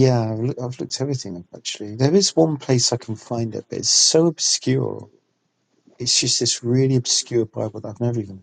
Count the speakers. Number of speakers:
1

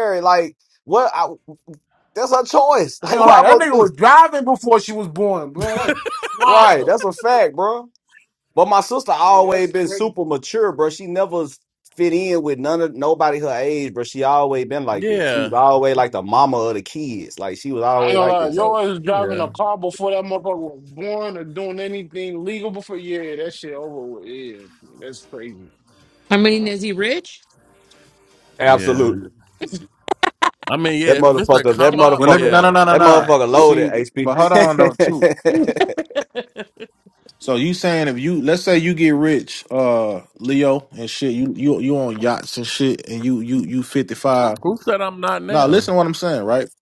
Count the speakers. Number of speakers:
5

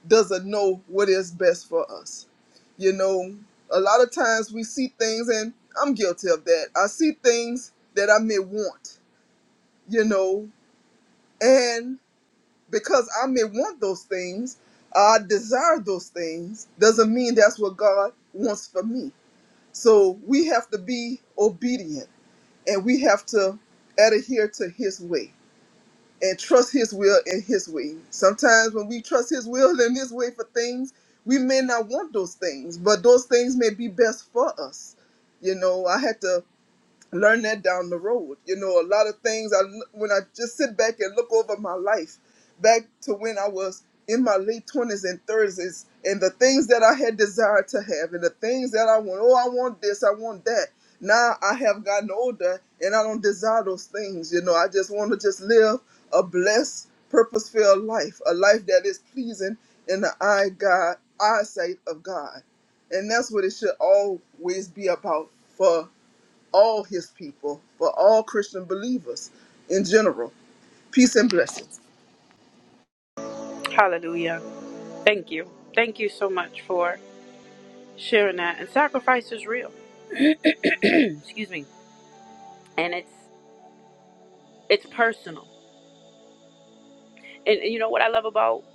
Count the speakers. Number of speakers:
2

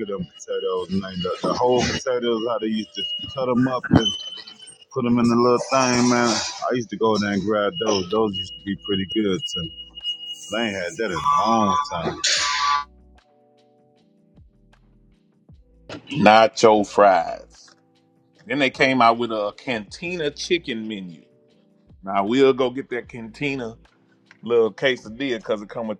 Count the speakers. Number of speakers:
2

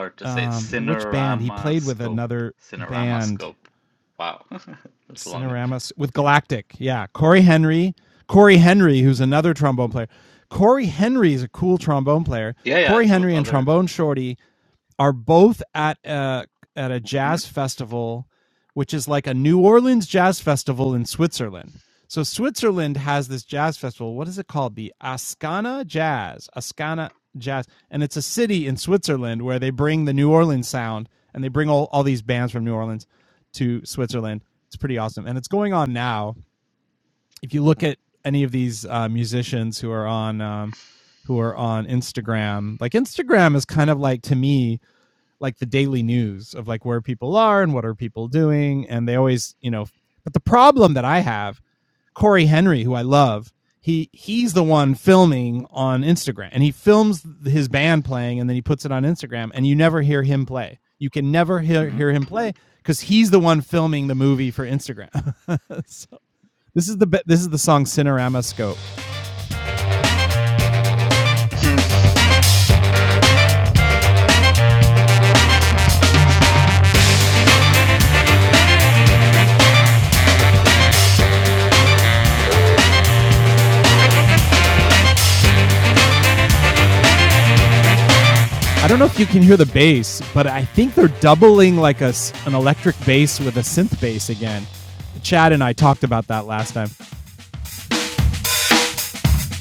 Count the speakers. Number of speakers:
2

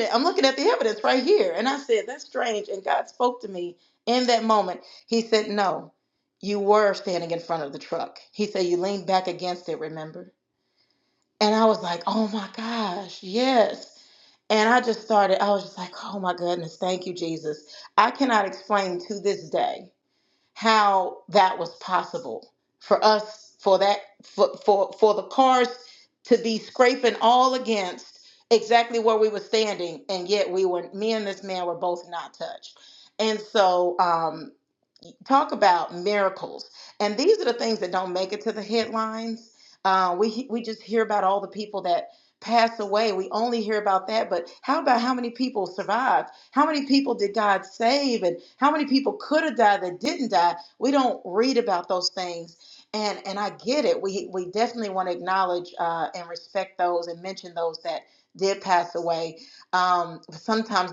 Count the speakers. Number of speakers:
1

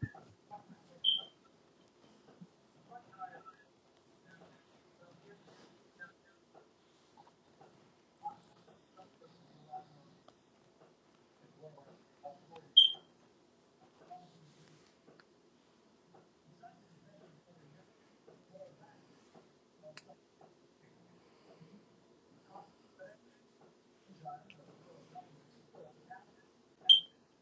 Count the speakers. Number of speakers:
0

